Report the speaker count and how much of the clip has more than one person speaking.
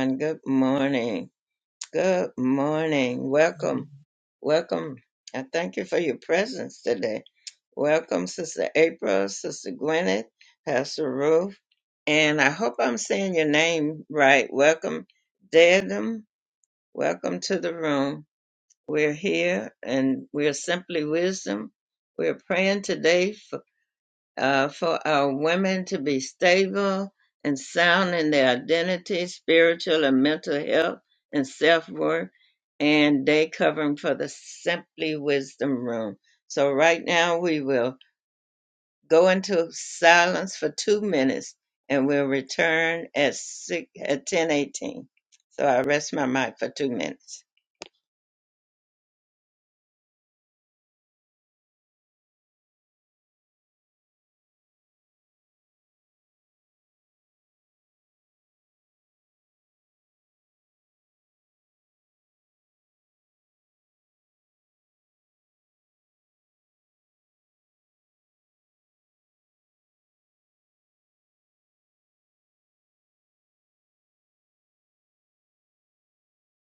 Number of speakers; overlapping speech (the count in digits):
1, no overlap